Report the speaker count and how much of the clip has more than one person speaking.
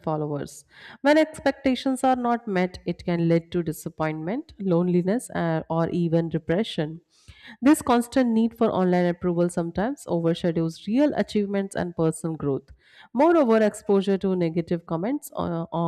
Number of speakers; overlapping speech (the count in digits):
1, no overlap